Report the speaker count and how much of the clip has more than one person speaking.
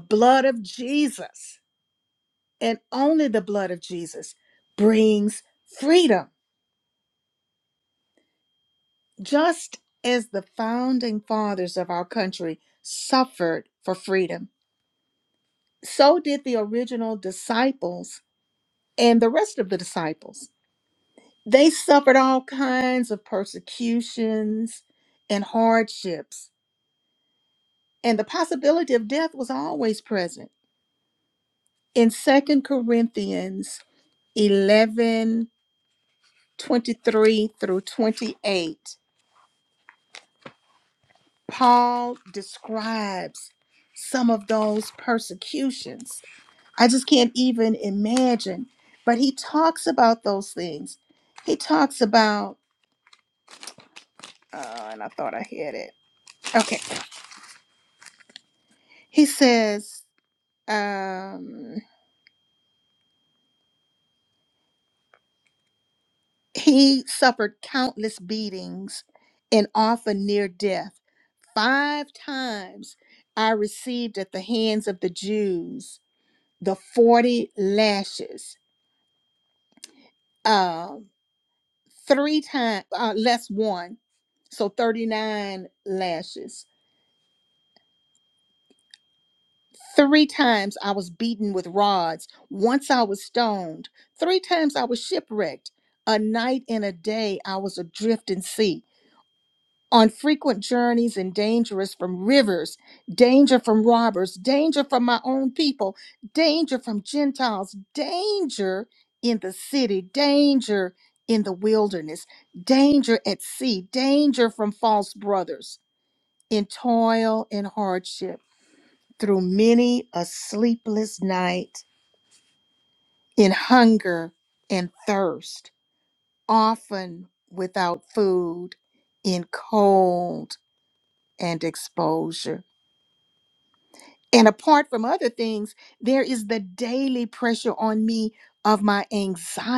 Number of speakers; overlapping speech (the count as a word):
one, no overlap